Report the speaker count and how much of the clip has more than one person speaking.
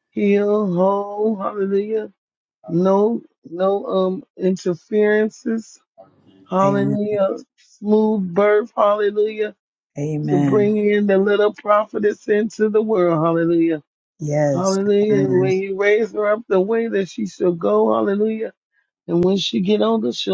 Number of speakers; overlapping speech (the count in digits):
2, about 9%